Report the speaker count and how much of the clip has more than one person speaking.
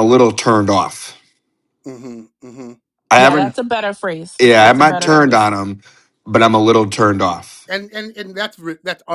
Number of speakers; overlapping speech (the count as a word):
three, about 13%